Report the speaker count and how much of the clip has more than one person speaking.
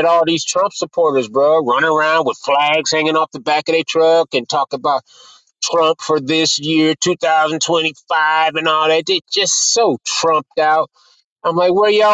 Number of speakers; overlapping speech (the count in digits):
1, no overlap